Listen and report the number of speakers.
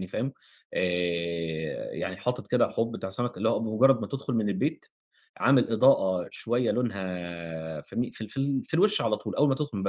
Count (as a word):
one